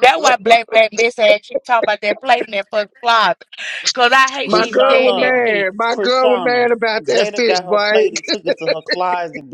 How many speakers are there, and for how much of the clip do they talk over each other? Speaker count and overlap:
three, about 31%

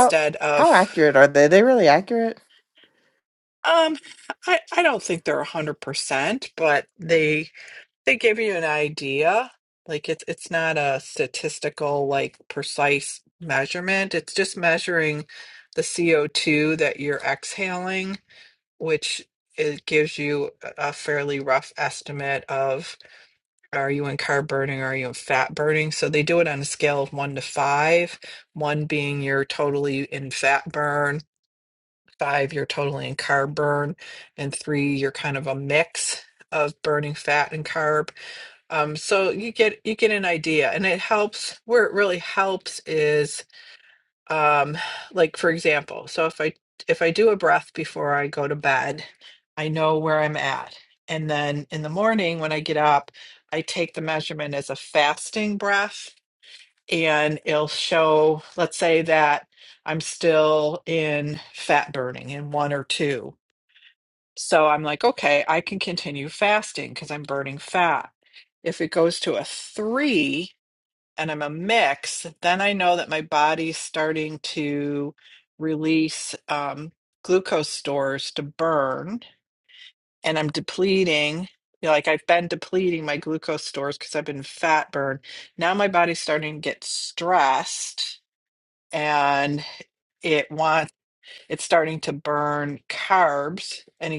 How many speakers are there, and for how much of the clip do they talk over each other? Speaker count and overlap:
two, under 1%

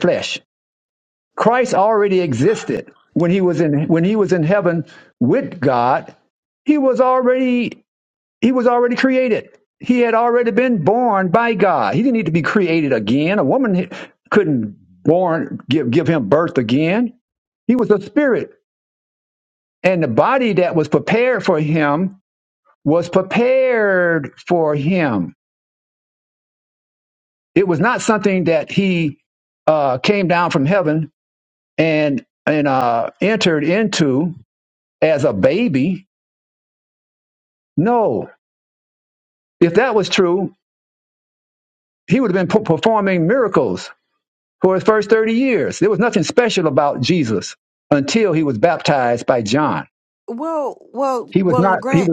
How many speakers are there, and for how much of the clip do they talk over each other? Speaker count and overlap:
two, about 2%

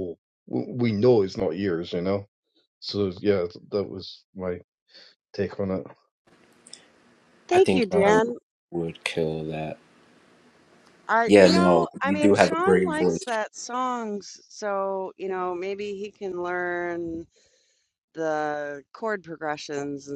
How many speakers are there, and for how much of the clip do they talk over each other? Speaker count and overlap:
three, about 13%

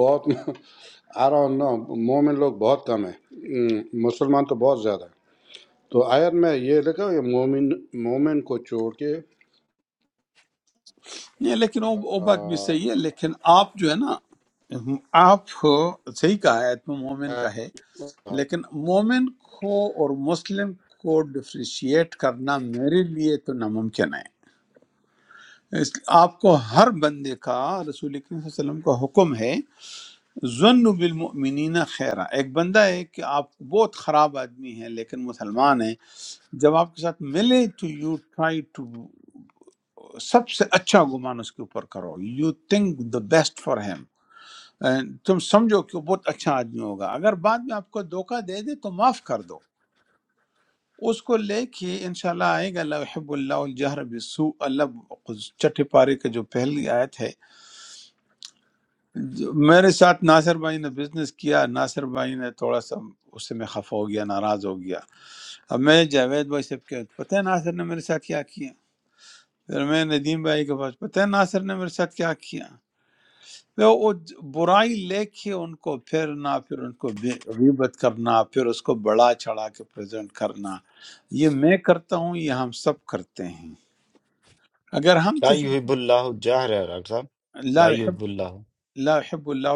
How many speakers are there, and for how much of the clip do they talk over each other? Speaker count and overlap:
three, about 1%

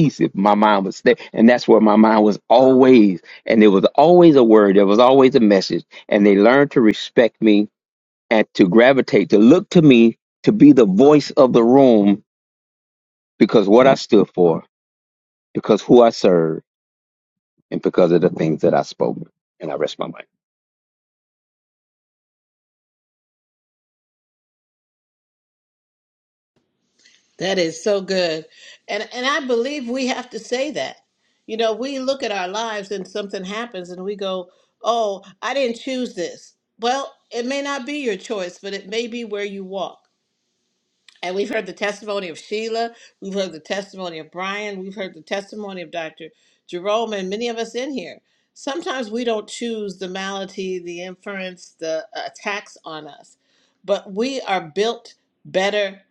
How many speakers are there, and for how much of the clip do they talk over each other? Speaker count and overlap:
two, no overlap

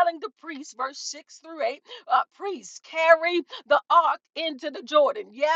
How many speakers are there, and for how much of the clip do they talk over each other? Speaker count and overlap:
one, no overlap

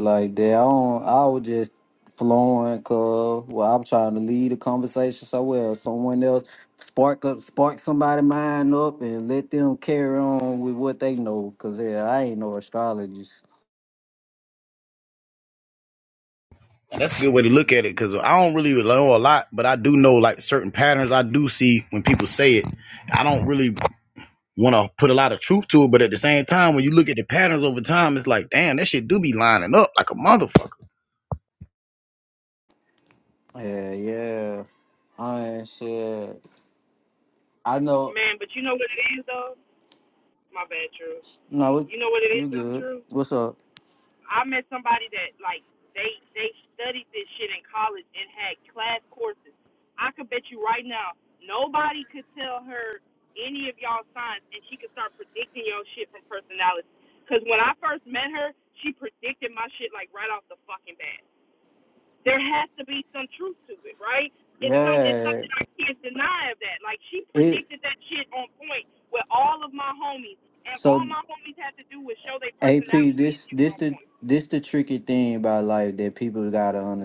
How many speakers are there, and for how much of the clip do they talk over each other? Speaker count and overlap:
three, about 5%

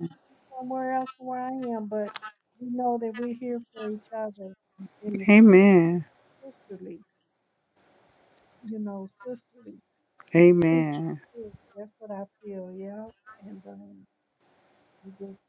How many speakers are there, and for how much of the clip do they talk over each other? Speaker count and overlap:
two, about 4%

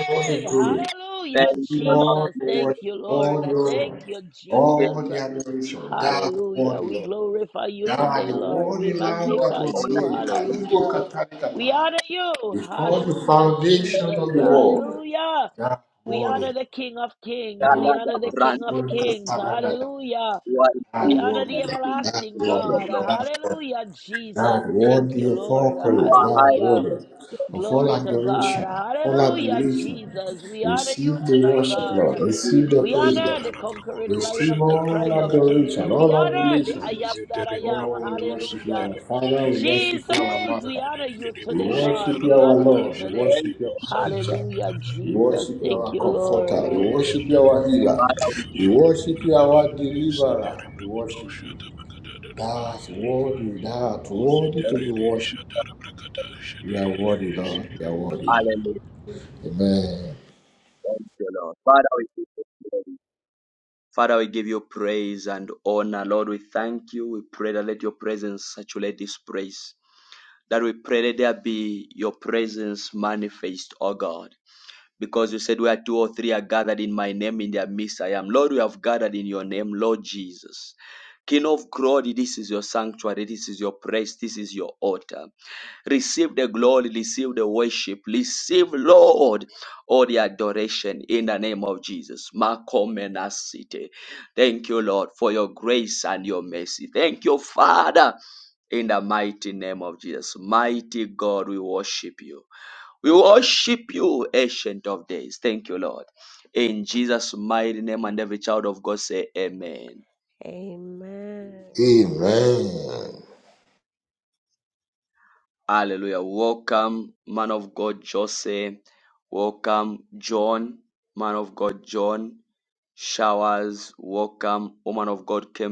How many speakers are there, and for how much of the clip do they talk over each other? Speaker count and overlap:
five, about 35%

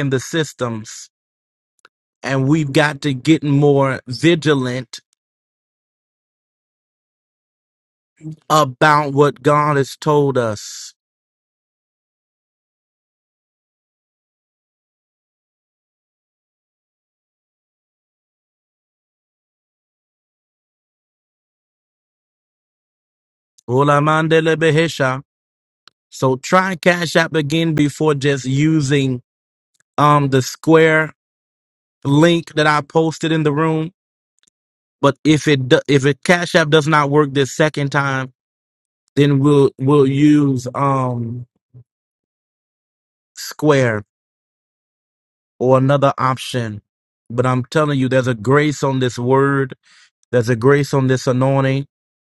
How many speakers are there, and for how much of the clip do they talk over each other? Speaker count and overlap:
one, no overlap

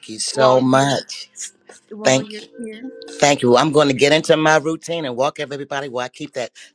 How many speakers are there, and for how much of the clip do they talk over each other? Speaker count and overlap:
two, about 14%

